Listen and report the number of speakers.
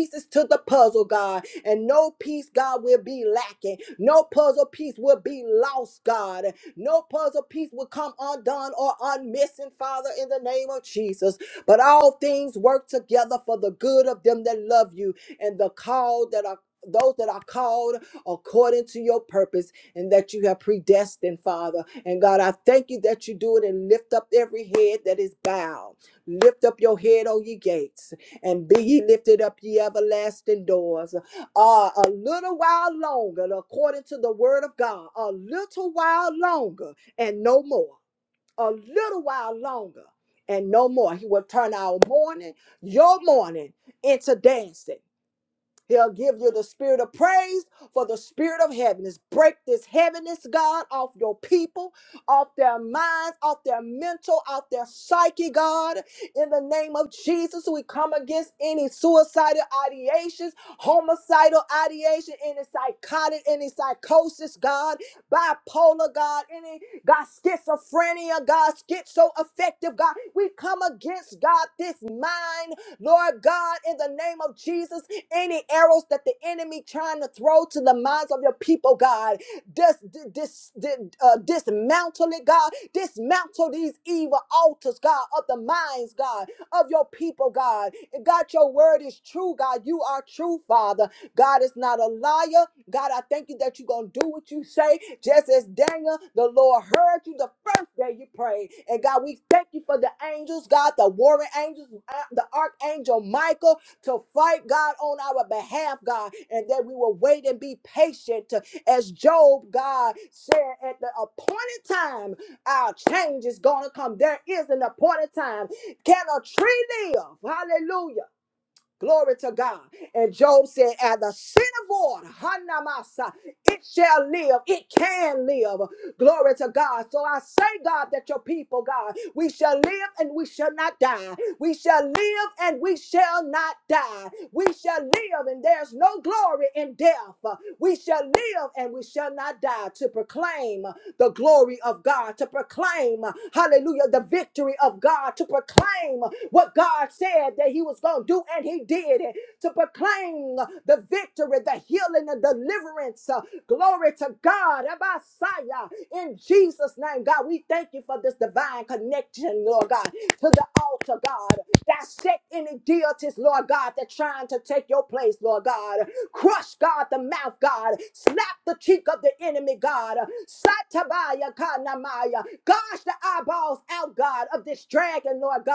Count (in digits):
1